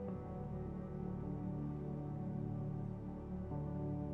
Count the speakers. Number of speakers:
0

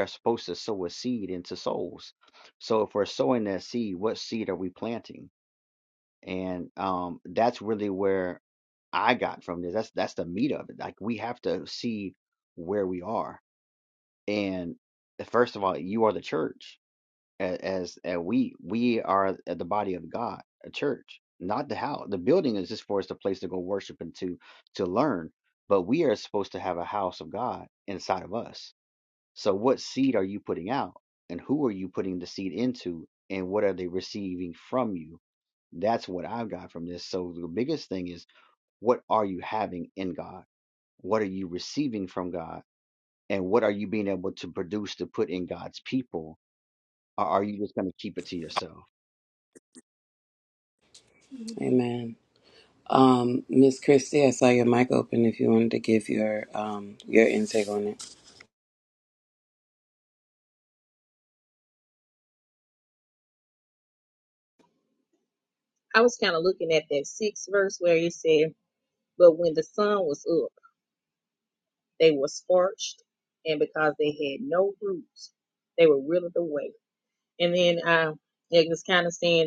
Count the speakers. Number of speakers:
3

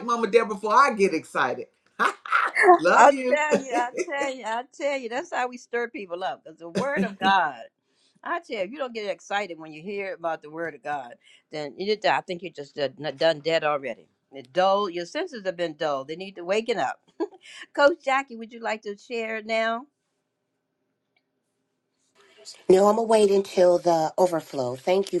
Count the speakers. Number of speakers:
3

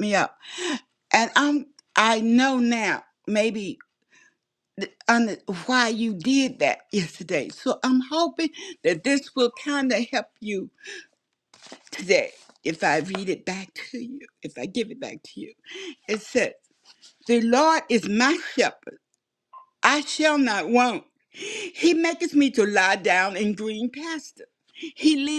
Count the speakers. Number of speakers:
1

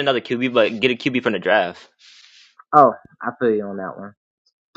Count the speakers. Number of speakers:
2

